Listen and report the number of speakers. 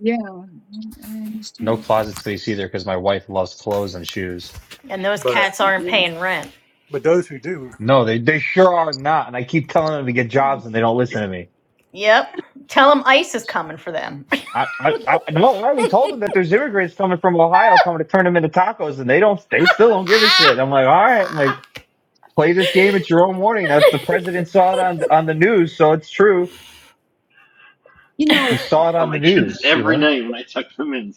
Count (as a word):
five